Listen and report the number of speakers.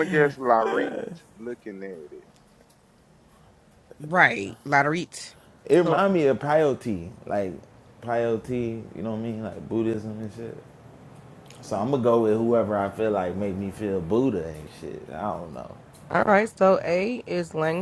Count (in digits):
3